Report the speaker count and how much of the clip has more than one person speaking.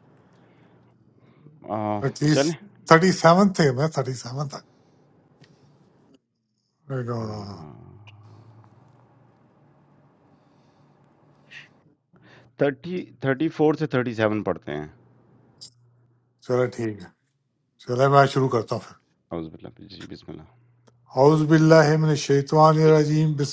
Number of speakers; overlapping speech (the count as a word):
two, about 2%